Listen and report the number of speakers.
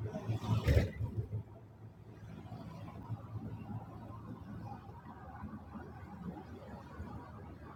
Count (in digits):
0